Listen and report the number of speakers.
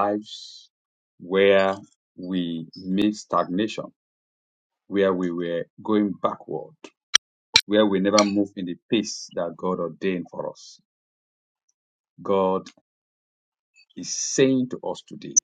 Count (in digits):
1